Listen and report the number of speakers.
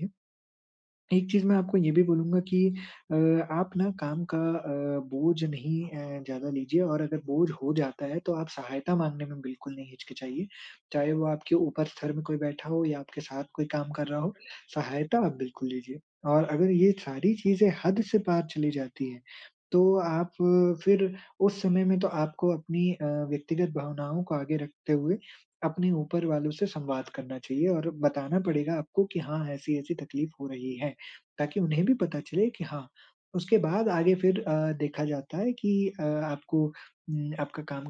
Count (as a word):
one